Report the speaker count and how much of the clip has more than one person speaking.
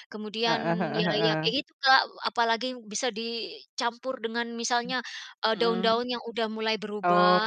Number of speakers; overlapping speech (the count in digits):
2, about 22%